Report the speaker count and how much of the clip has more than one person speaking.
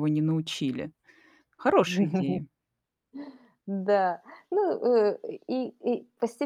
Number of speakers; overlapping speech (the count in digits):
2, no overlap